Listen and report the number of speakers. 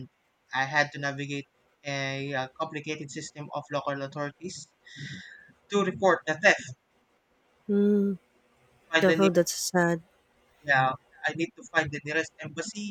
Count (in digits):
2